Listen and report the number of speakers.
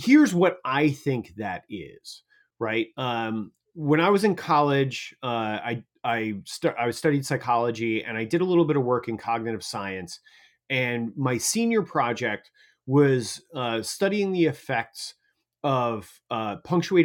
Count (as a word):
one